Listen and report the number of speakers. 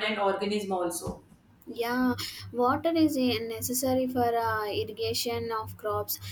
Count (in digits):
2